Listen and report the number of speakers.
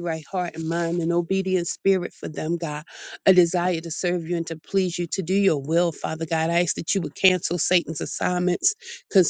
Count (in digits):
1